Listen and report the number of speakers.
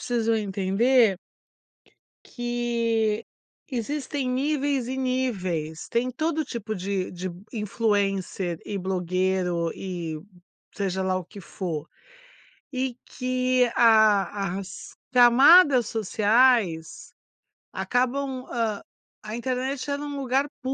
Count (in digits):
1